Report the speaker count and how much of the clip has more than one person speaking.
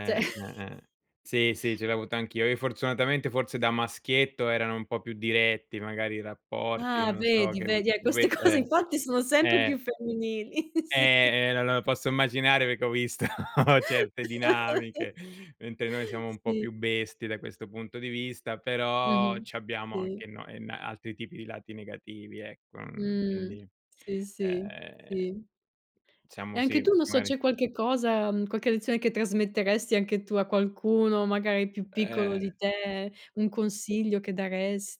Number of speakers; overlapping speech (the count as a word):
two, about 17%